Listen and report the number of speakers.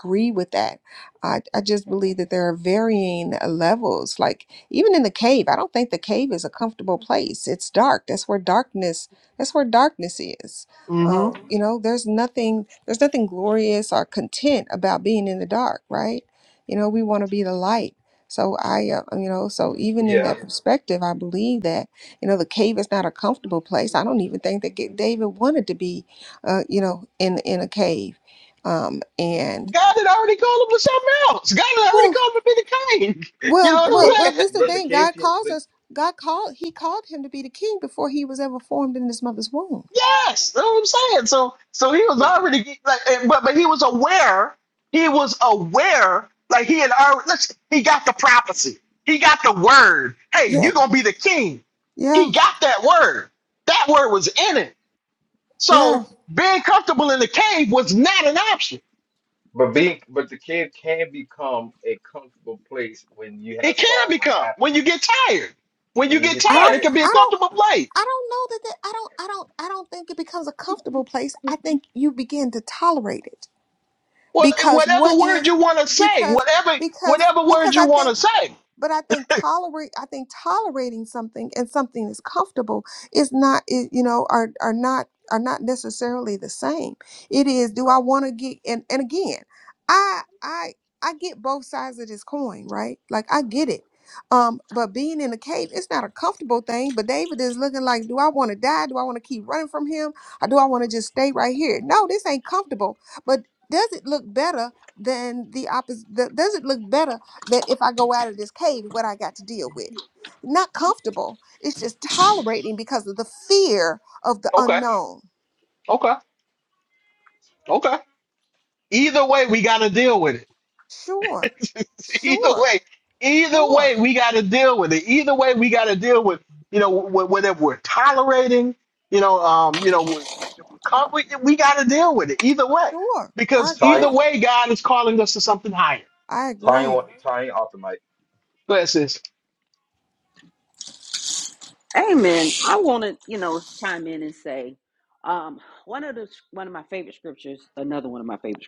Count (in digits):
4